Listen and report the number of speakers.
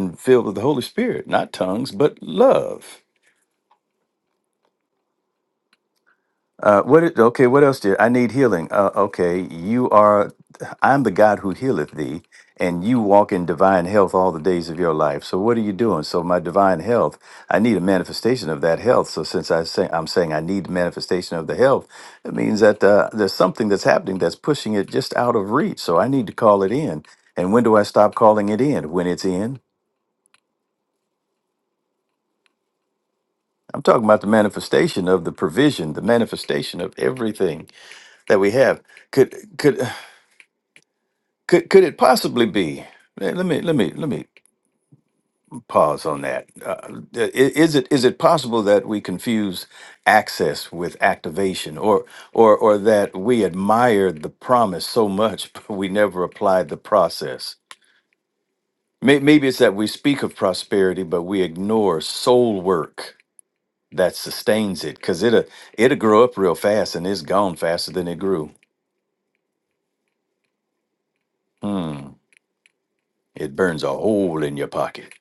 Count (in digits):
1